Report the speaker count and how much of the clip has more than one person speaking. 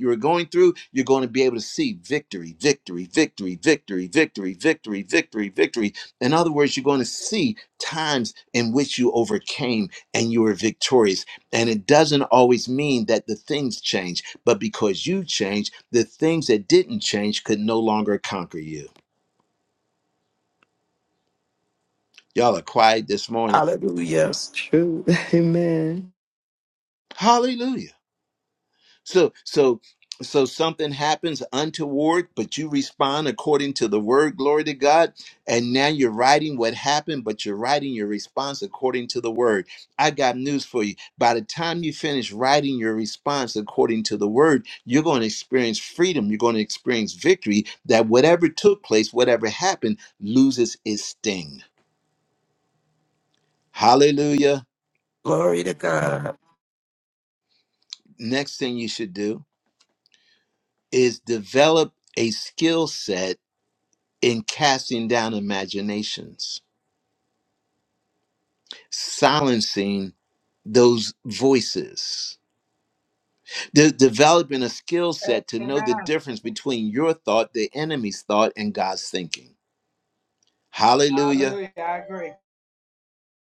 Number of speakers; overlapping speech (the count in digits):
4, about 1%